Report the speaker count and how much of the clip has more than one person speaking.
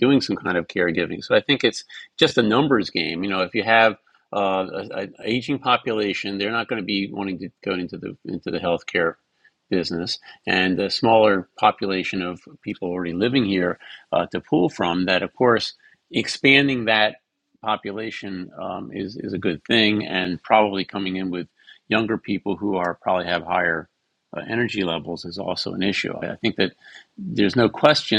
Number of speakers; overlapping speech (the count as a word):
one, no overlap